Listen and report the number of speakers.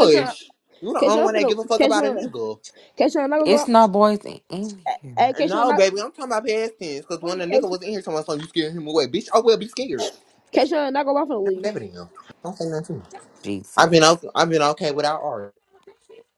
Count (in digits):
3